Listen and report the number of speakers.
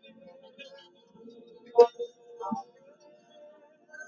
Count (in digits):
0